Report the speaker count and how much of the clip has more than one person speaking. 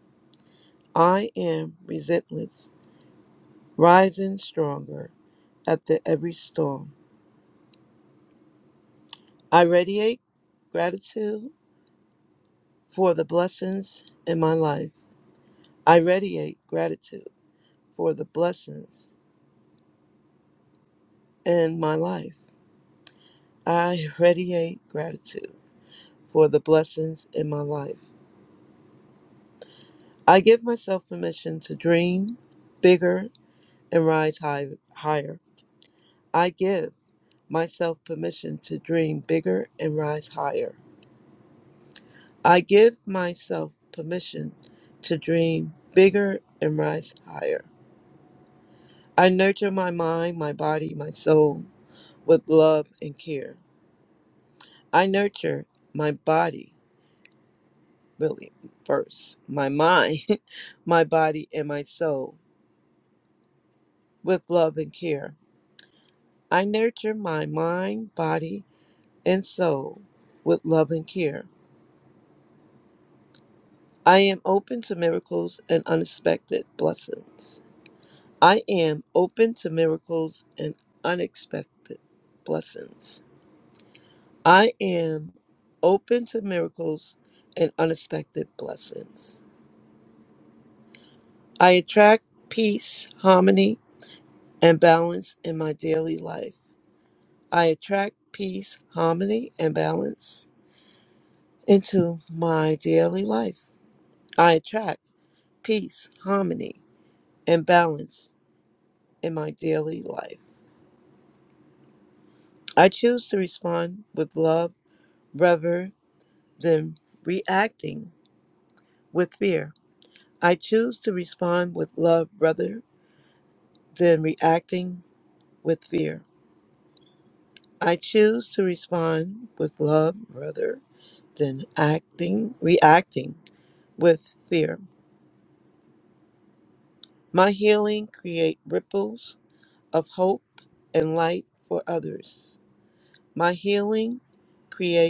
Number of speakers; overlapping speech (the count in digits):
1, no overlap